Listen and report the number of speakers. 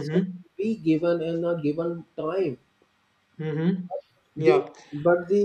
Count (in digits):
2